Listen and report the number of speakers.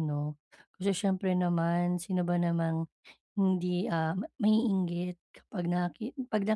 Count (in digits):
1